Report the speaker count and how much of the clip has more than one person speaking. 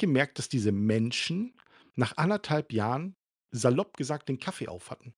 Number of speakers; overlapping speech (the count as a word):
one, no overlap